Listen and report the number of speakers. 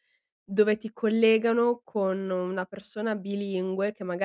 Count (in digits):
1